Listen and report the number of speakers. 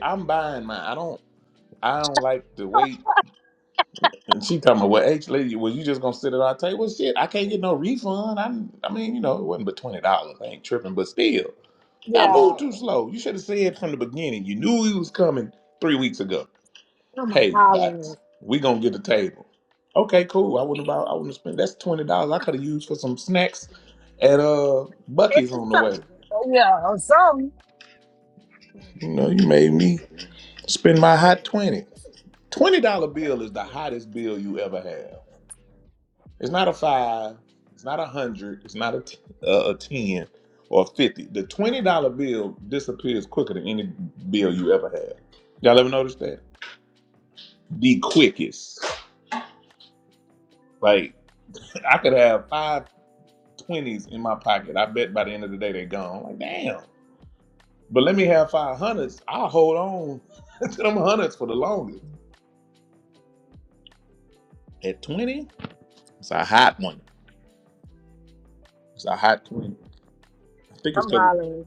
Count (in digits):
2